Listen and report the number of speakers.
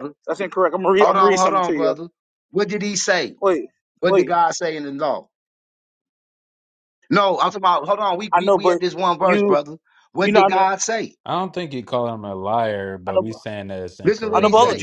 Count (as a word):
three